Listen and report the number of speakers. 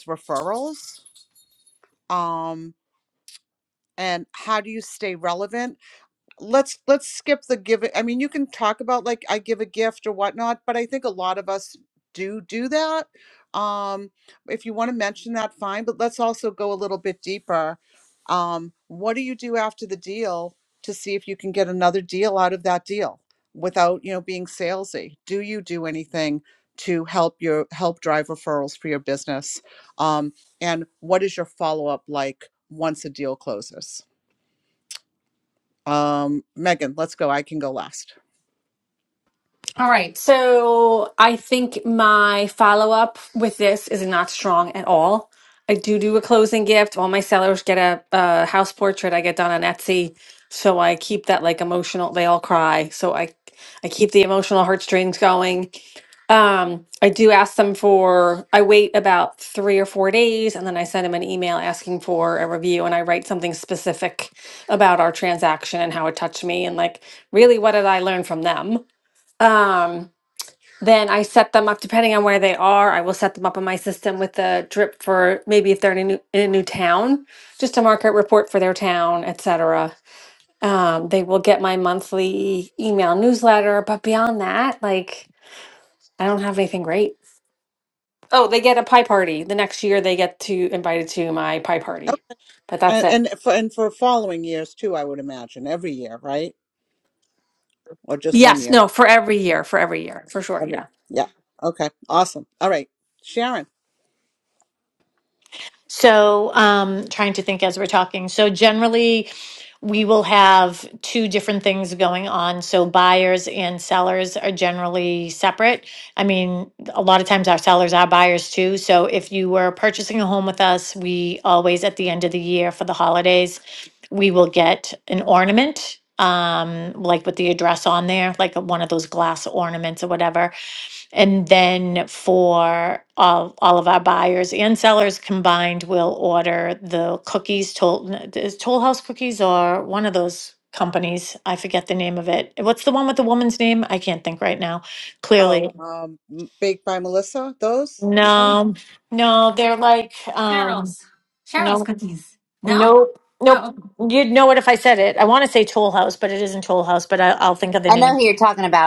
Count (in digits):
4